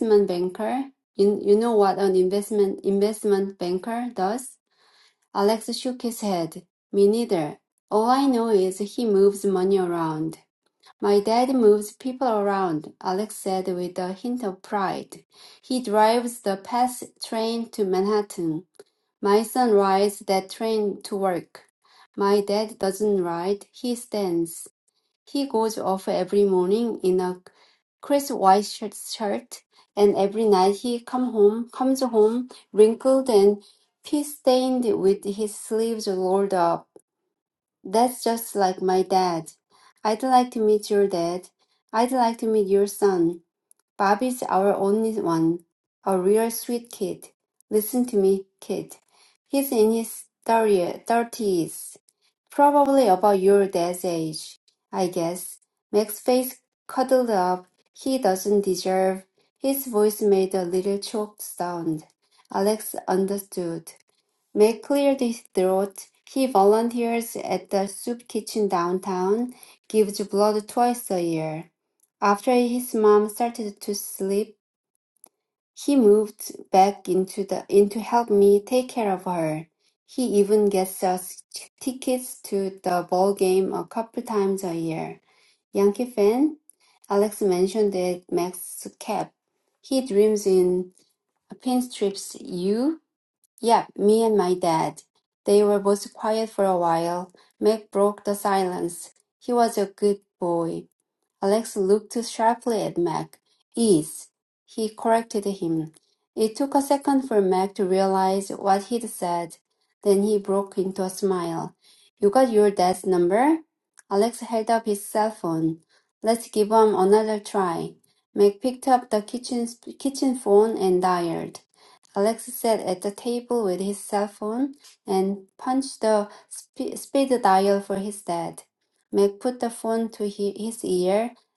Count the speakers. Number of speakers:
one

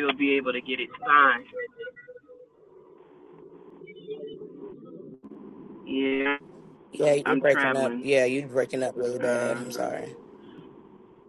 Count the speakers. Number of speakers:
two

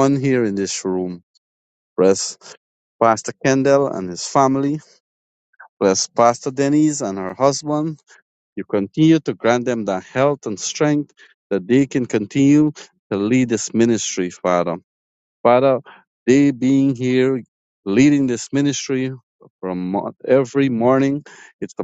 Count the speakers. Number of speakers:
one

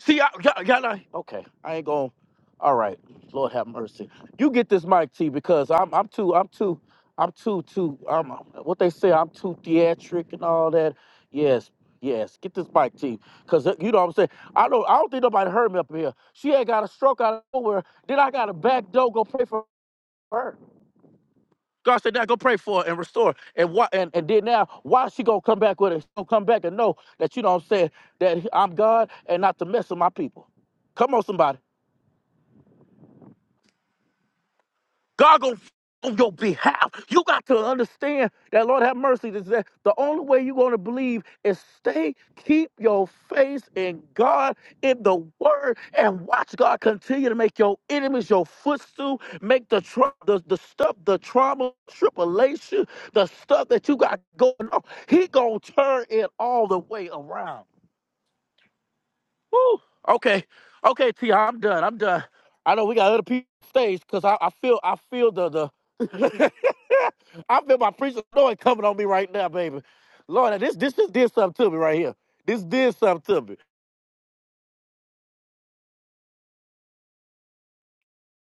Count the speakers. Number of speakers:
one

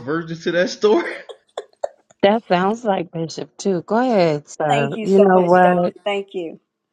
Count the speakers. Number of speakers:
three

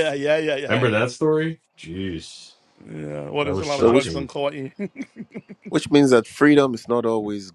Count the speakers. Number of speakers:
three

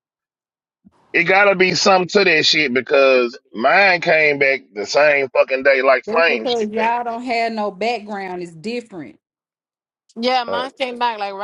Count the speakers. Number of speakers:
three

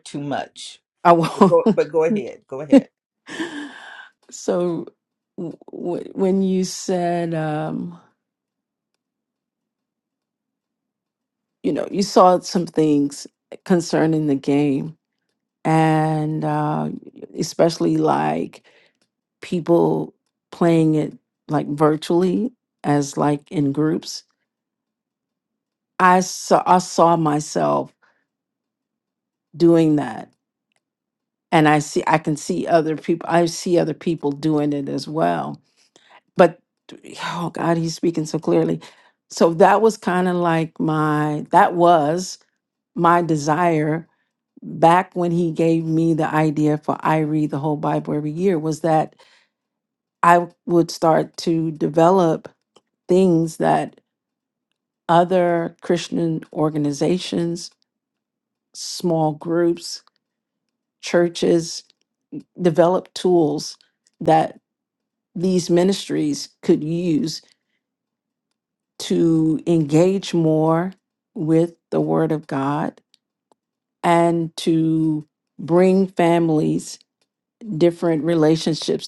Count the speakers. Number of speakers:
two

